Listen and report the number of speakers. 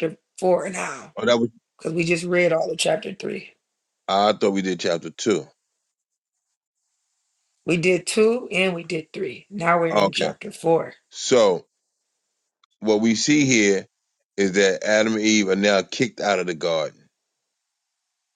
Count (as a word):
two